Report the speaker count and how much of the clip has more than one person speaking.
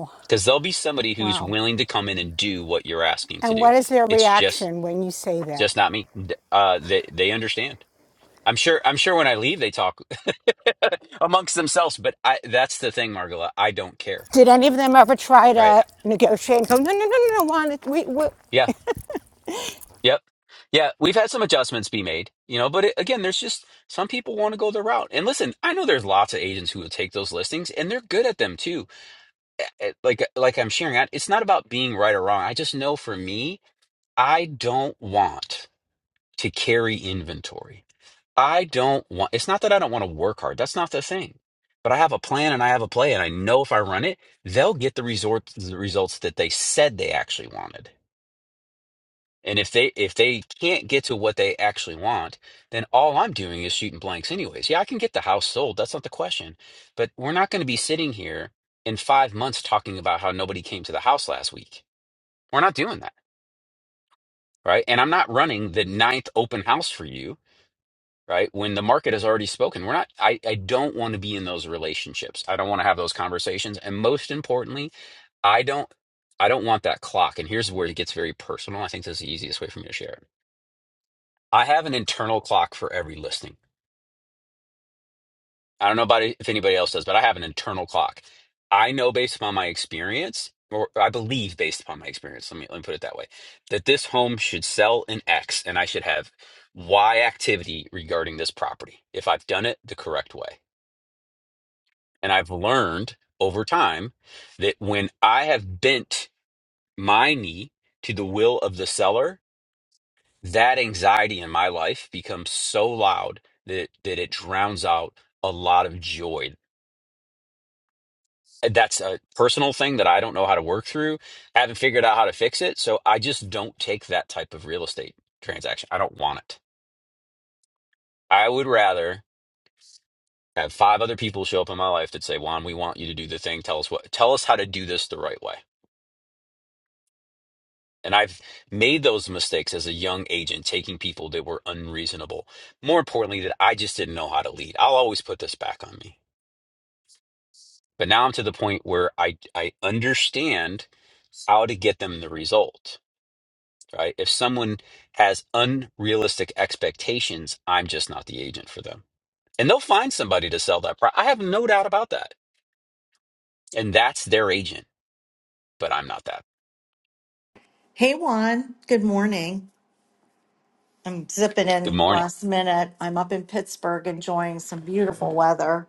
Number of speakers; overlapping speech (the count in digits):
3, about 1%